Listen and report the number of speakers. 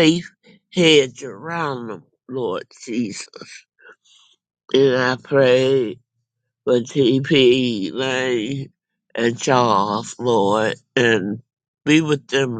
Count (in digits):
1